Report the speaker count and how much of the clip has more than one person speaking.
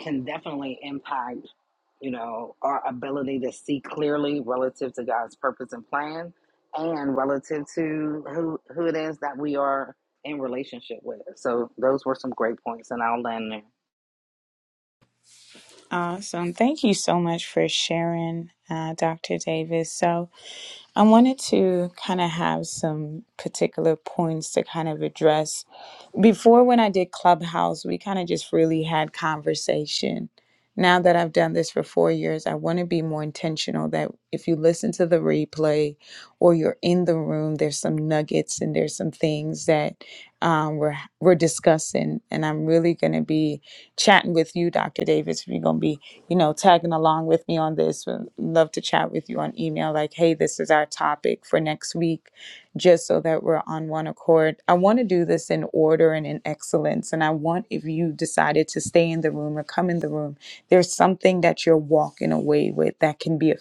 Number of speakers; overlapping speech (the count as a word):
two, no overlap